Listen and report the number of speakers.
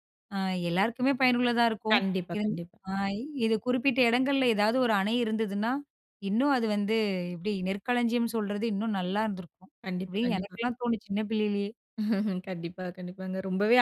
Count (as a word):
two